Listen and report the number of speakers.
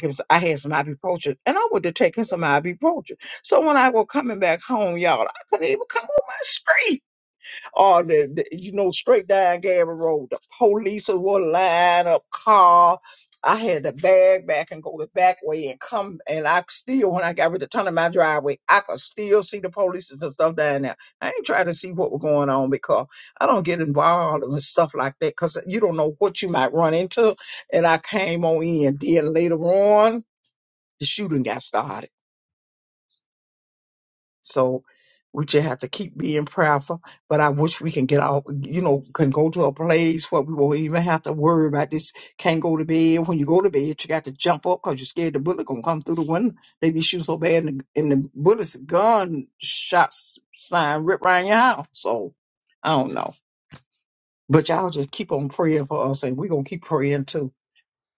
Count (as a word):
one